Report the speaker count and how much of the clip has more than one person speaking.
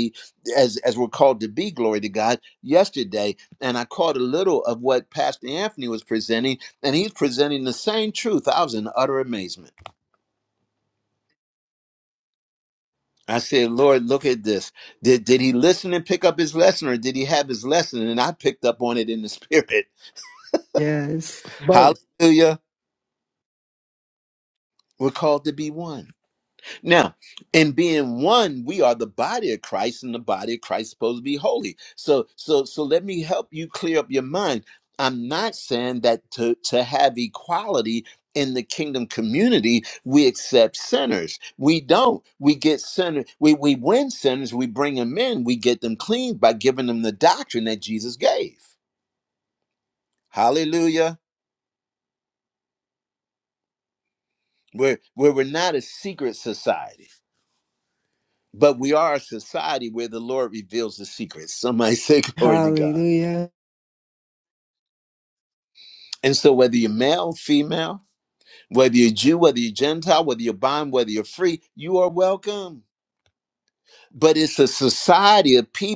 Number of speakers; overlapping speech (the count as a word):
two, about 1%